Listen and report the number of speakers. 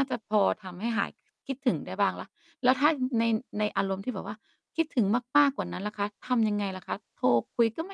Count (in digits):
1